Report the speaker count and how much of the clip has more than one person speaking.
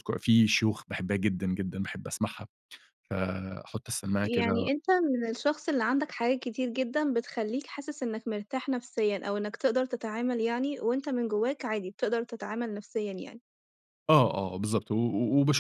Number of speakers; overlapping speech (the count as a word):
two, about 3%